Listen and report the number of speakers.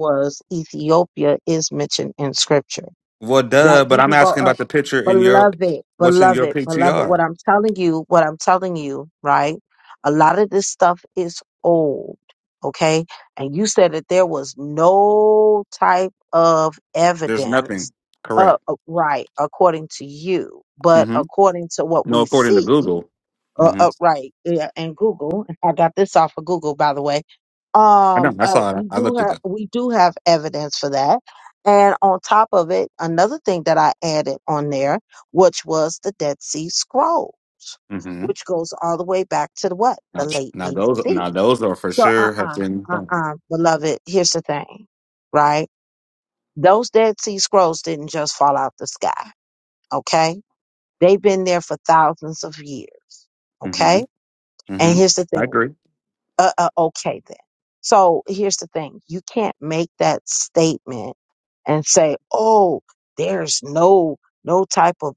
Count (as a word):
two